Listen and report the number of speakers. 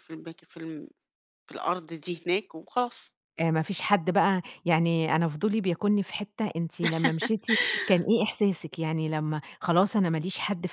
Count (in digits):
2